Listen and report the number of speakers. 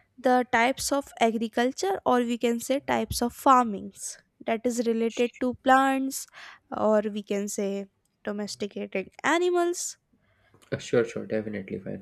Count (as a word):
two